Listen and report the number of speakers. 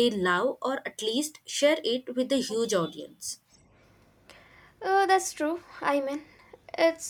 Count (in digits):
2